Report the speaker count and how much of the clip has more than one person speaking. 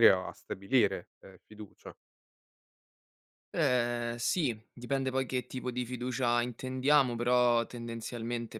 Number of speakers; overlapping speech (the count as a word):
two, no overlap